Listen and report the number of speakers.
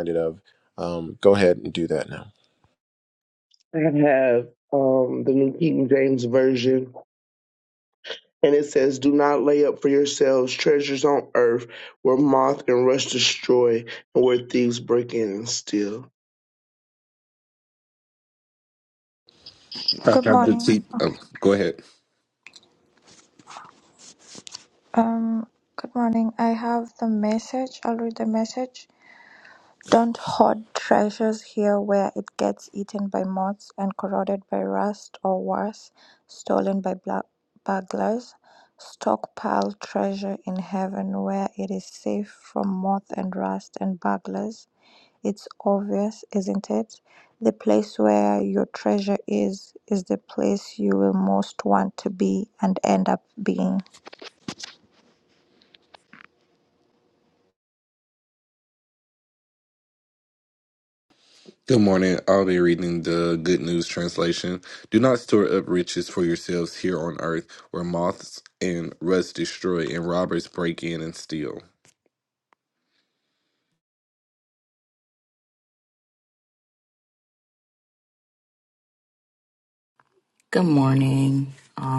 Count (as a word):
five